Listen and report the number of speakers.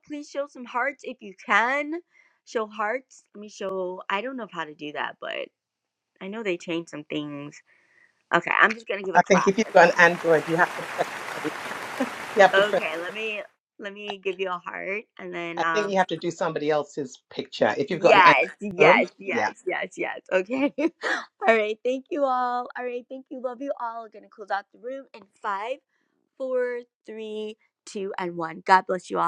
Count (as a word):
two